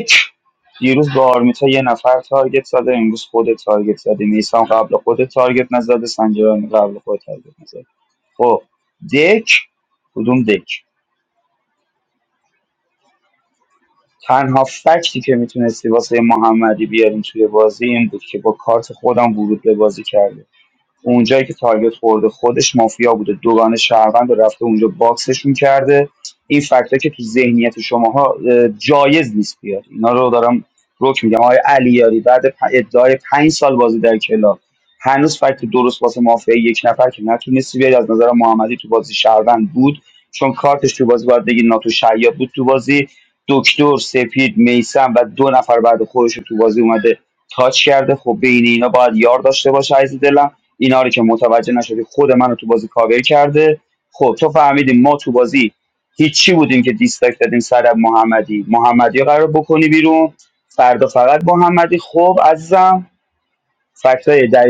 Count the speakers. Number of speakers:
one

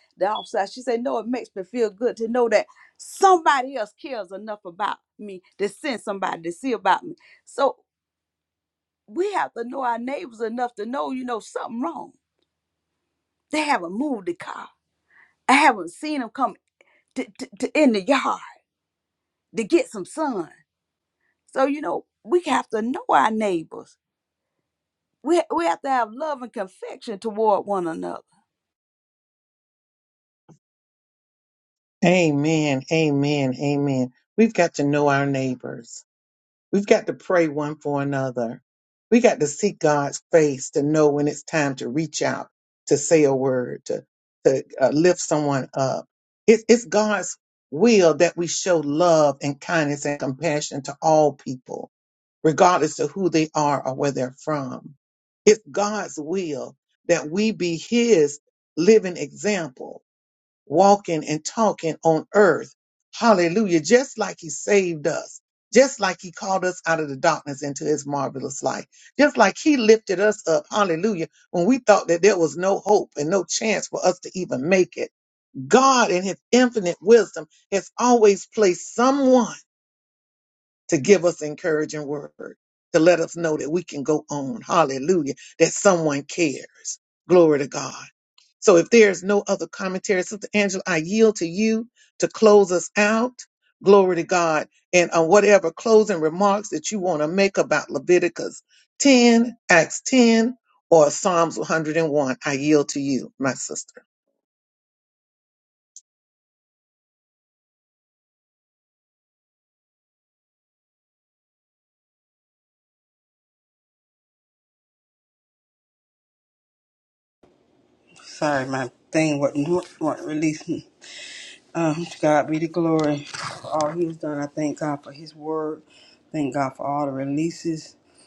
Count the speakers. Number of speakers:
three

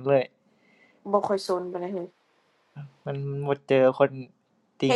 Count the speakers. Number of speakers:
two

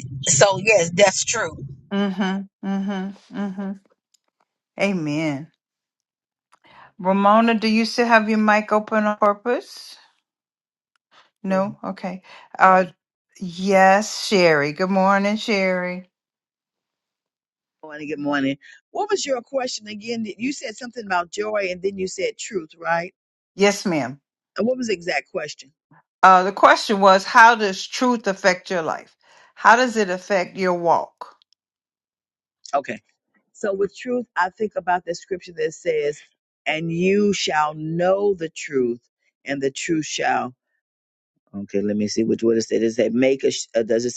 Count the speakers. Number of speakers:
three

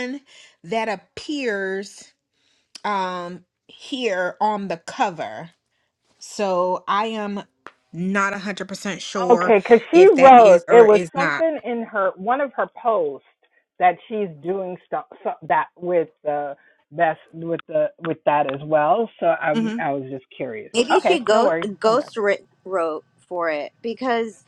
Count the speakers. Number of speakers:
three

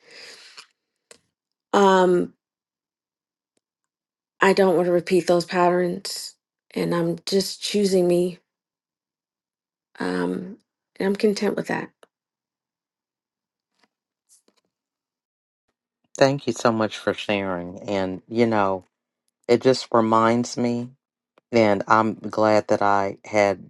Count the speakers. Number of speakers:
two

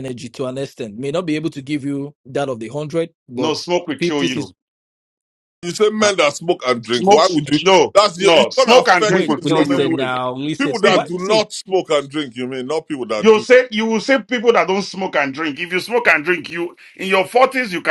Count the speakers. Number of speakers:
three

